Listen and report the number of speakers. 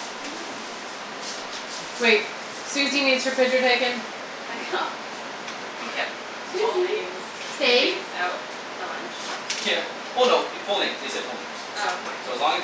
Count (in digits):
3